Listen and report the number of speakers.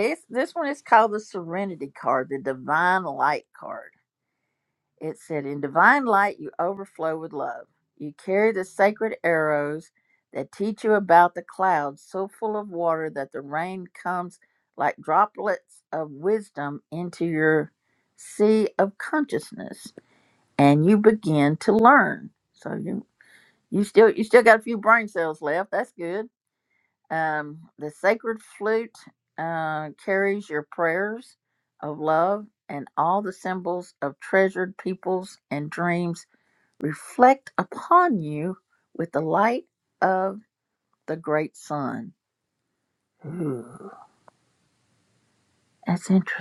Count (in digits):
1